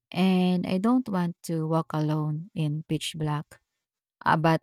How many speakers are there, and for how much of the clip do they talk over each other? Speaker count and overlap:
1, no overlap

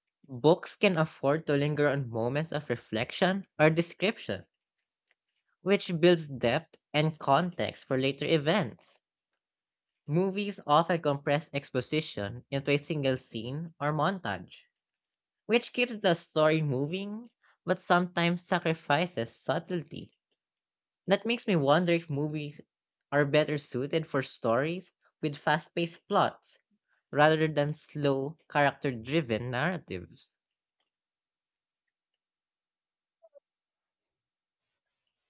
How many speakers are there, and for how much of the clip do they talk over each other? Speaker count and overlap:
1, no overlap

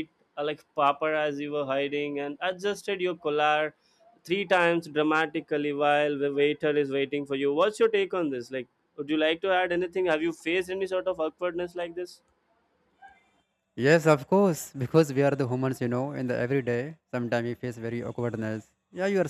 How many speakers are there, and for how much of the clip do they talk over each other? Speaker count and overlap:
2, no overlap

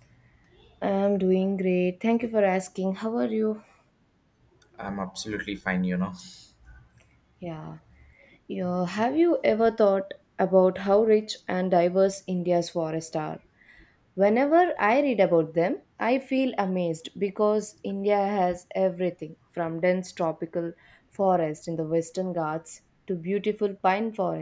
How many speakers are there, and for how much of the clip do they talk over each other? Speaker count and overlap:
2, no overlap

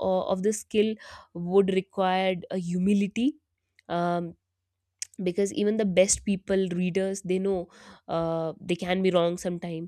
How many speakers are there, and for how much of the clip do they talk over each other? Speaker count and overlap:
1, no overlap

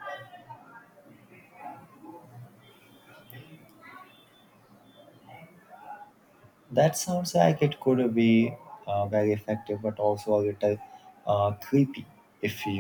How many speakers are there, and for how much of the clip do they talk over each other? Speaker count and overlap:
1, no overlap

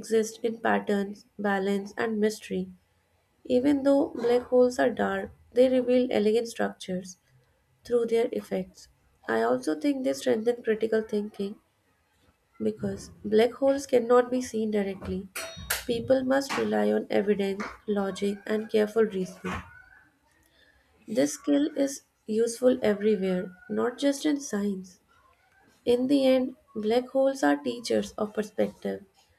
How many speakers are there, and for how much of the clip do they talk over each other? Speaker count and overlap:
1, no overlap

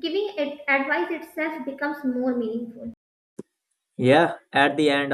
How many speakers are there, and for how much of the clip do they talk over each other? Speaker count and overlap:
2, no overlap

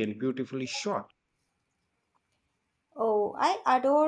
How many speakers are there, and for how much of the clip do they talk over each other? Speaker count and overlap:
2, no overlap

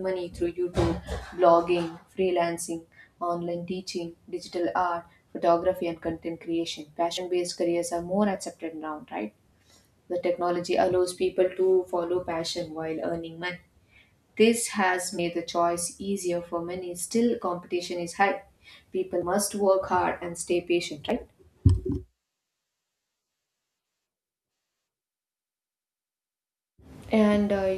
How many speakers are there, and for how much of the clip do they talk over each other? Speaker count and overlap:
1, no overlap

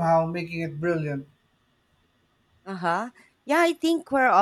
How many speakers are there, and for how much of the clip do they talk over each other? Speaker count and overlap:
2, no overlap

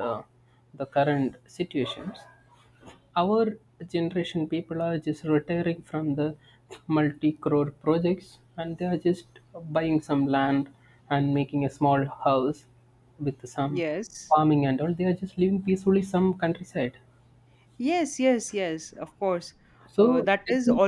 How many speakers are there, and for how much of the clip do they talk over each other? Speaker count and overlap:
2, about 5%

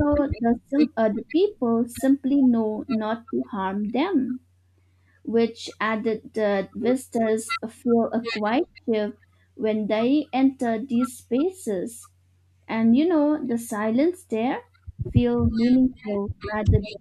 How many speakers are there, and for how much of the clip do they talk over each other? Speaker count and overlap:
1, no overlap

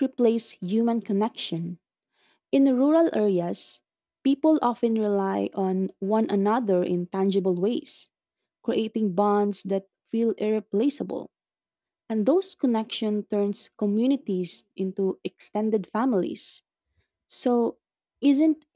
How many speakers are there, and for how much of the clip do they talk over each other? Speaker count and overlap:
1, no overlap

